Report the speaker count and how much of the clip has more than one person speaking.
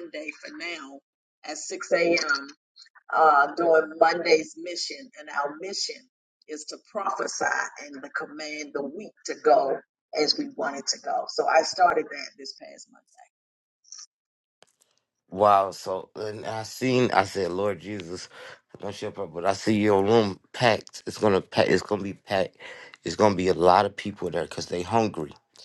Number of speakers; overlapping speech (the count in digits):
2, no overlap